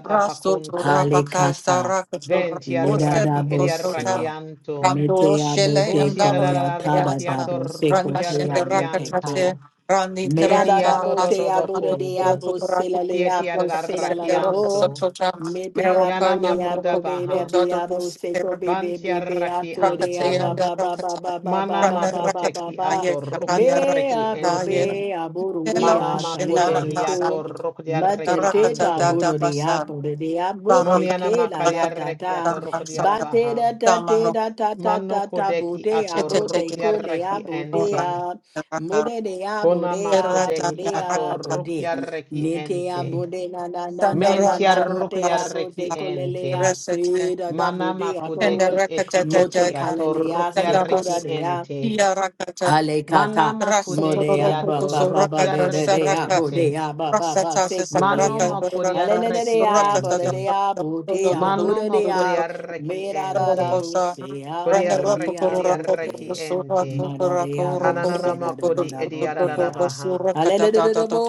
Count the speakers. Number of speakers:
three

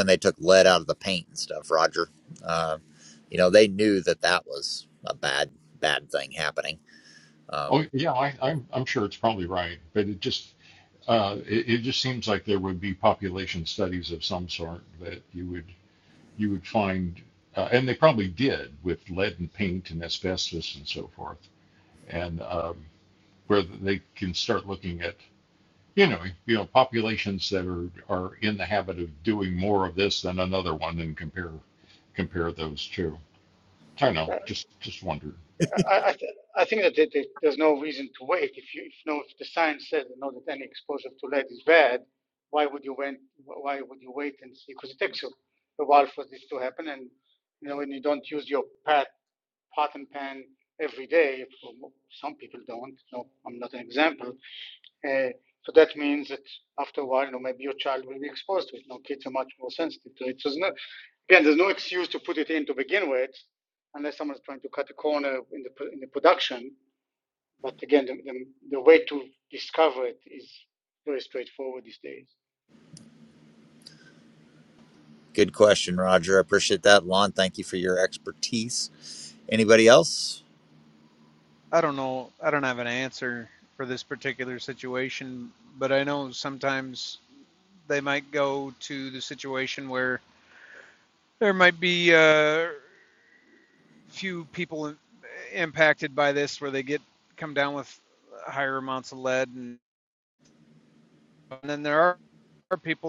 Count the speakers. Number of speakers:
four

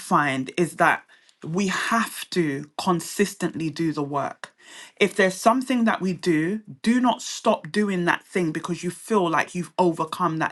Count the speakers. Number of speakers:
one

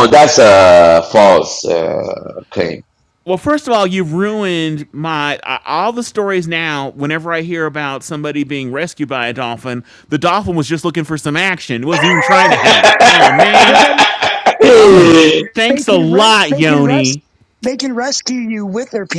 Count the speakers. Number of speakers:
three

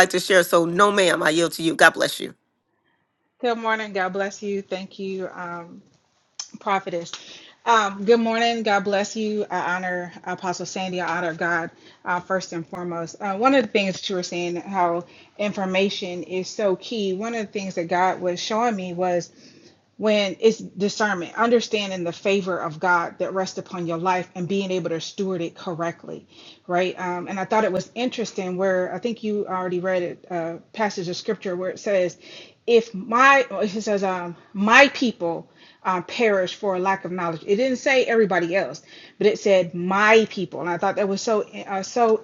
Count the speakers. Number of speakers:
two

